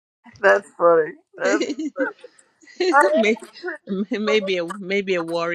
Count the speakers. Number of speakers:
2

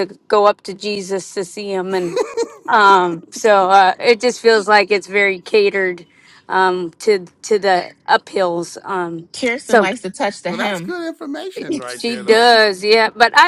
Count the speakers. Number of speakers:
3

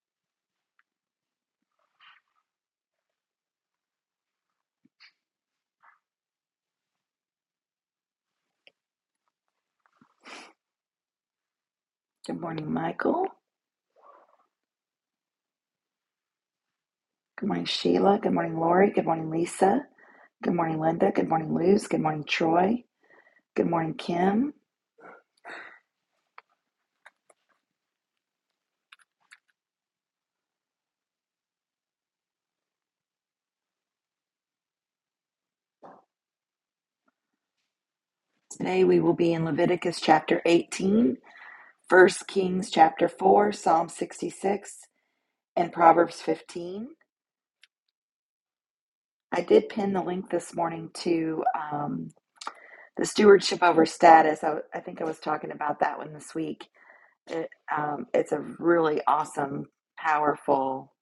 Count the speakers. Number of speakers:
1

